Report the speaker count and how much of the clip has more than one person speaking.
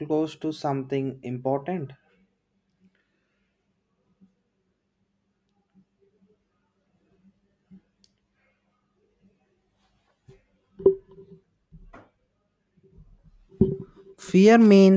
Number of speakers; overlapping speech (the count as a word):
one, no overlap